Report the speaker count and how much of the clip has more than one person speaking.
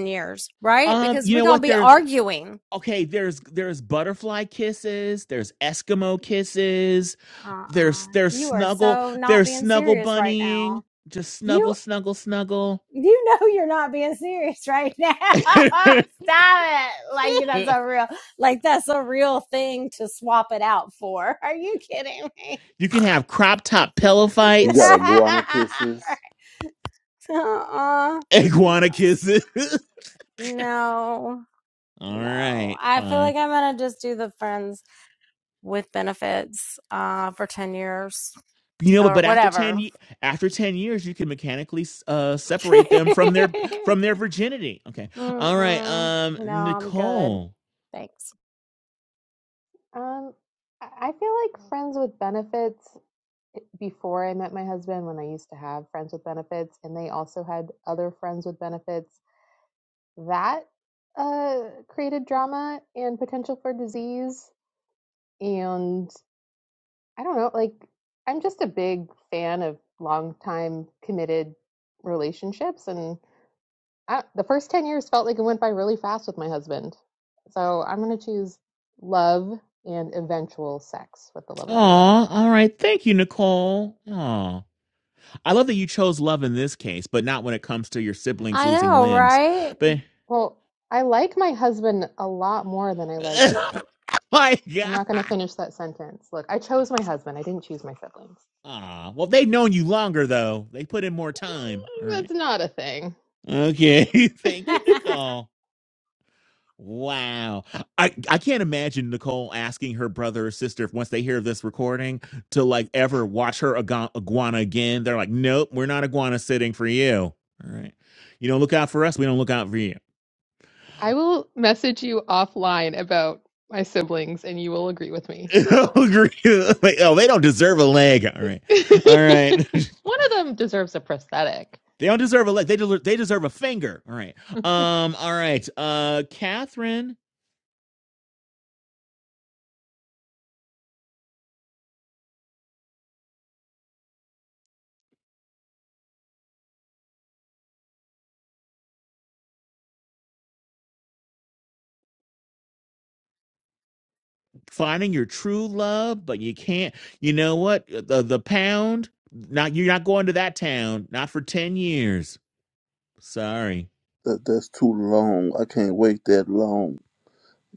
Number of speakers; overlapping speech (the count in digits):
4, about 7%